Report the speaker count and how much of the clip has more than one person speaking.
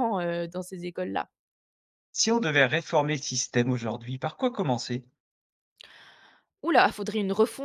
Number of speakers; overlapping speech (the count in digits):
2, no overlap